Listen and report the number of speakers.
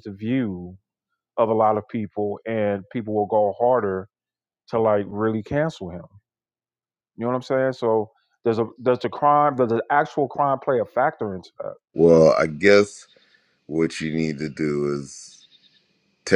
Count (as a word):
two